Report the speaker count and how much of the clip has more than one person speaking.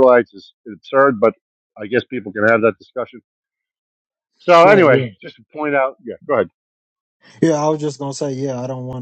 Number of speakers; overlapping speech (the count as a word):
two, about 5%